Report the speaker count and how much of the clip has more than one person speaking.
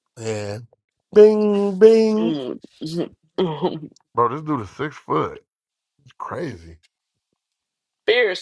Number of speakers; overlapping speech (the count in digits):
3, about 2%